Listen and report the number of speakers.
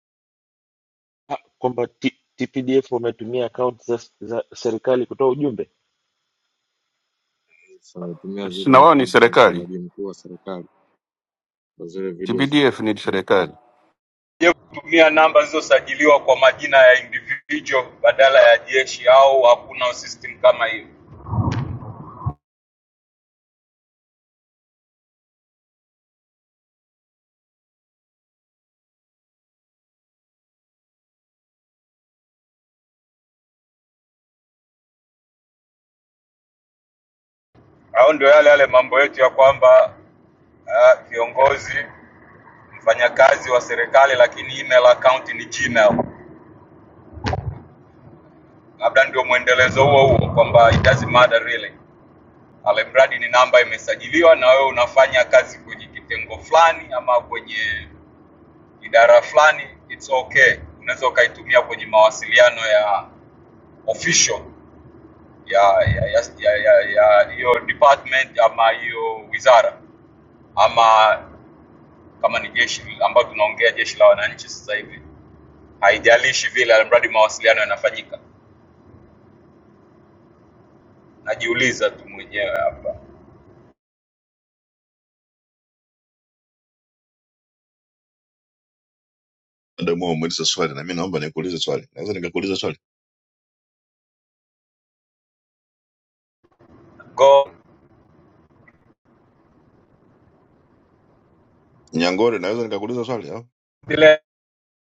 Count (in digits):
5